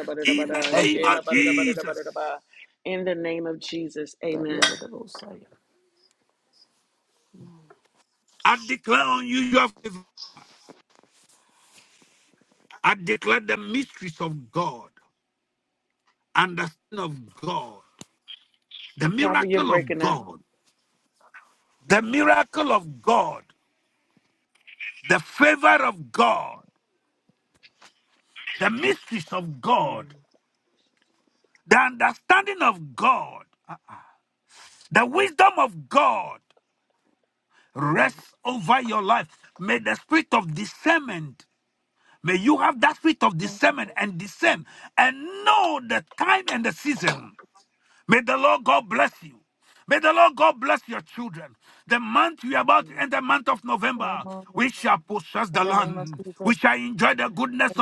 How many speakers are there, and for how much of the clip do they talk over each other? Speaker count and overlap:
three, about 8%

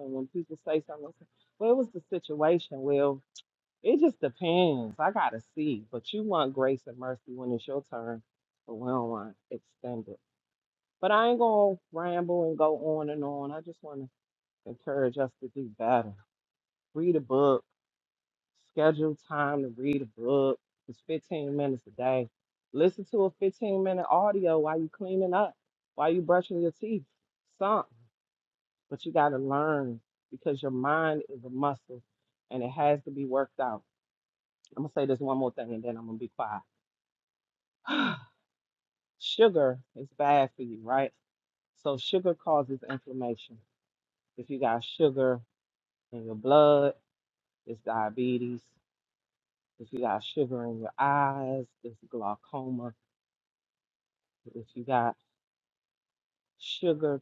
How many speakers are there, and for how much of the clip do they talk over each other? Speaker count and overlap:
one, no overlap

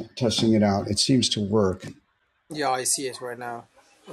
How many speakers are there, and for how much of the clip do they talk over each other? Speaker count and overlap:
two, no overlap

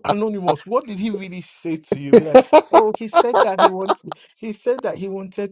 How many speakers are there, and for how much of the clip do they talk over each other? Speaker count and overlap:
one, no overlap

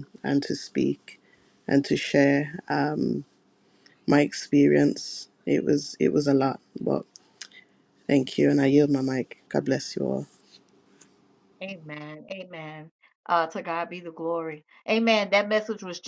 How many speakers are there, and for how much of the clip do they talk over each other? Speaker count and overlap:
two, no overlap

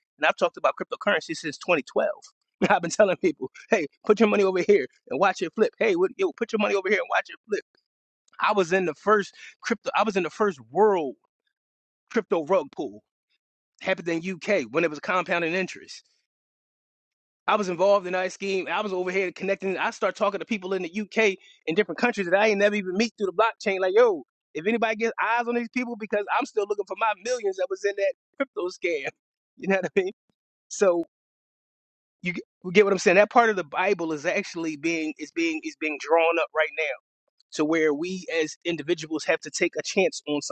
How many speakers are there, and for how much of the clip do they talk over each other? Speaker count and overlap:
one, no overlap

